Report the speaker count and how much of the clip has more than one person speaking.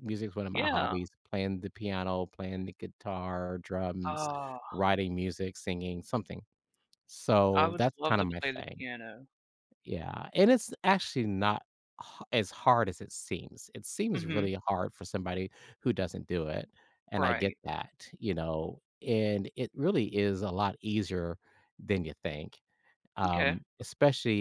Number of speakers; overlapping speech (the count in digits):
2, about 13%